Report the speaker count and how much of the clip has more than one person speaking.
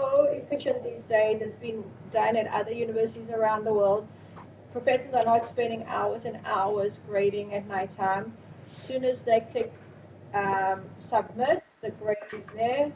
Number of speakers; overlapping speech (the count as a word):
one, no overlap